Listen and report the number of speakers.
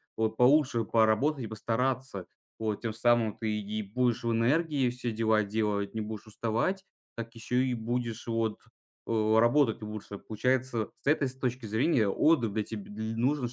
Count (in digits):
1